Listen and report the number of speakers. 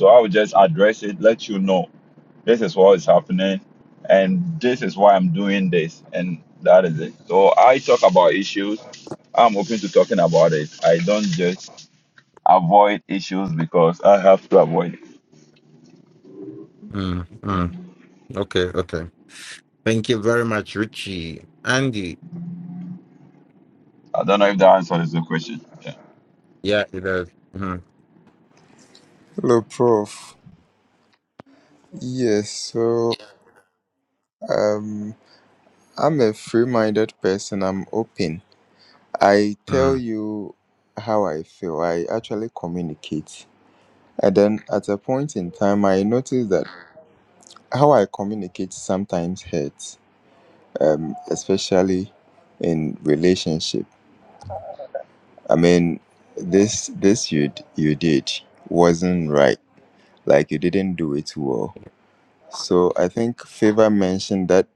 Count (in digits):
3